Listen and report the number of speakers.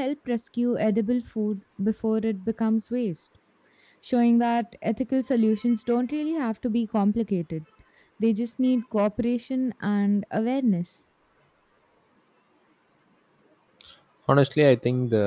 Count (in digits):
2